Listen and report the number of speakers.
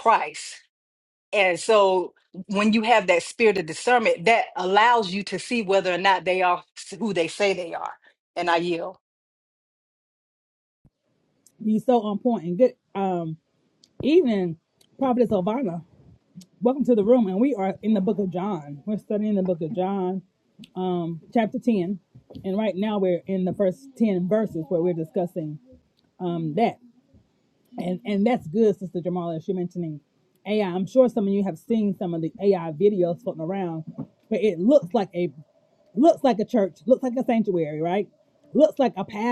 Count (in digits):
2